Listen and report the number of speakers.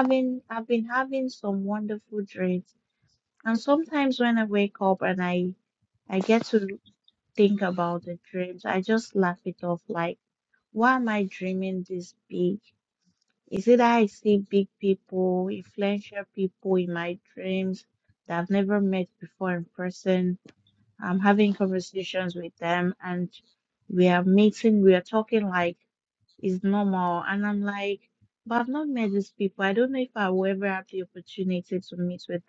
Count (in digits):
1